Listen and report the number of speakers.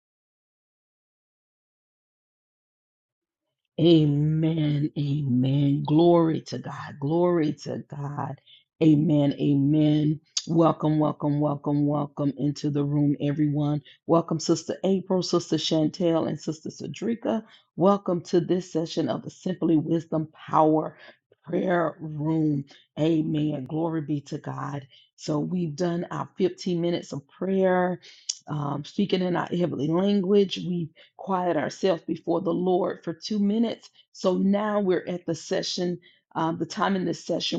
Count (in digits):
1